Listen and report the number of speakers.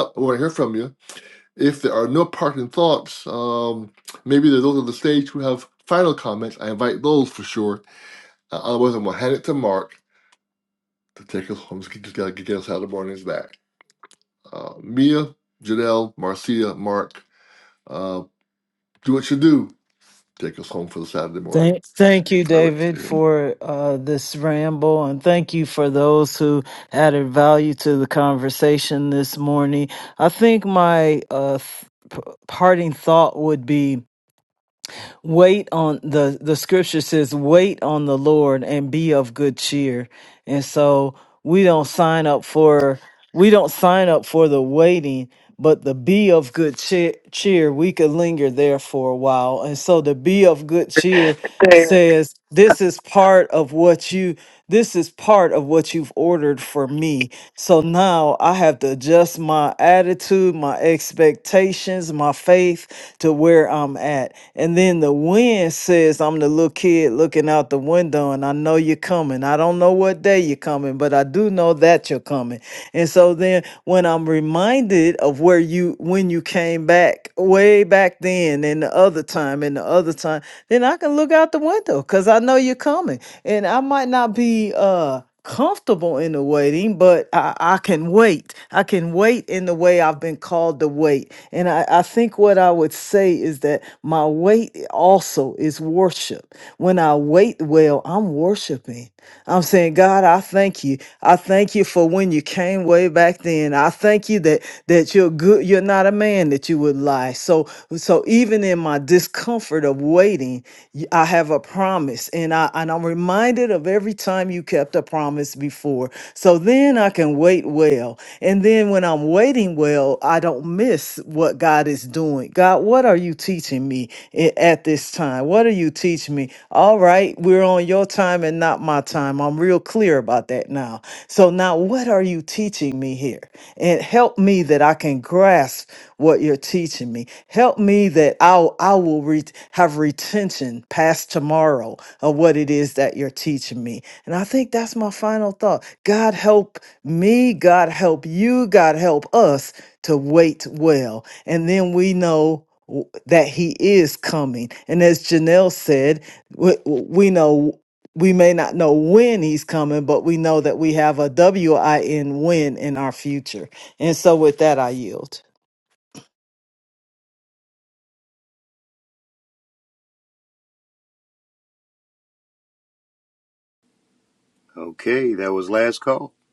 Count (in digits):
3